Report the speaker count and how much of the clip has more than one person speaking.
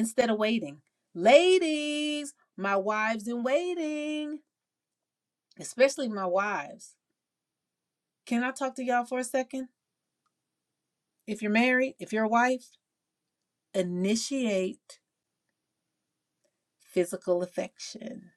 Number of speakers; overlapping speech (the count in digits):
1, no overlap